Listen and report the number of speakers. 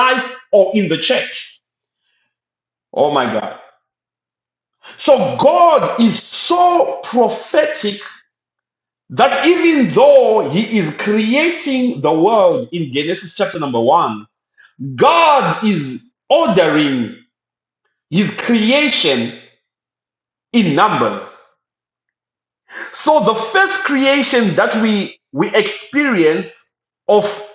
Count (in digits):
1